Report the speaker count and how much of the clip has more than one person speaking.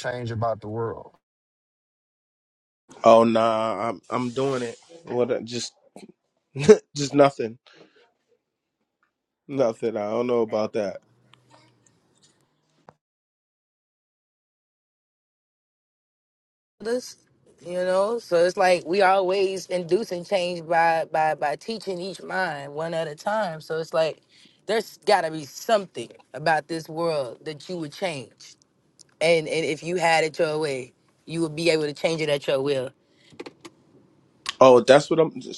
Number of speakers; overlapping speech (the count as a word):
three, no overlap